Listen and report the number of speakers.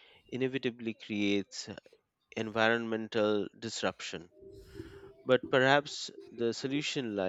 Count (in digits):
1